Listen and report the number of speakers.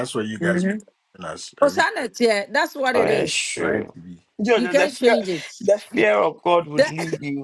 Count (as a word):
three